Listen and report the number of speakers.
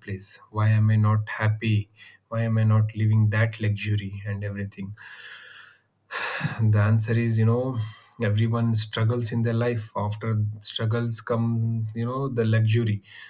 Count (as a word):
one